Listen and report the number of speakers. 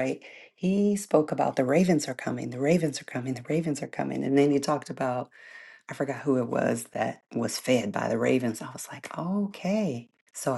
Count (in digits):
1